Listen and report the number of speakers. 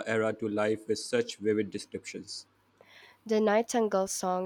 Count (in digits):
2